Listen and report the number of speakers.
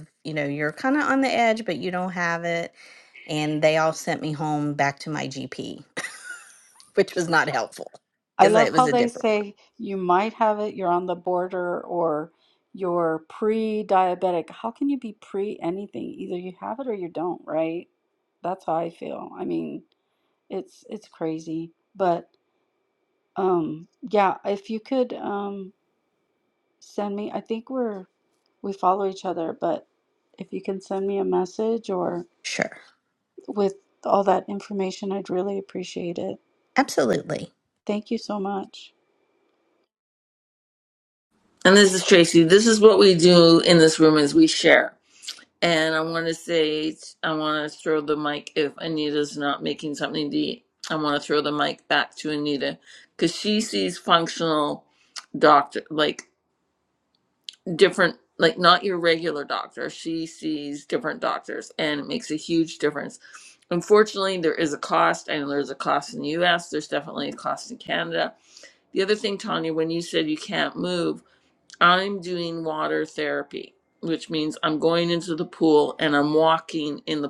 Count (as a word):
three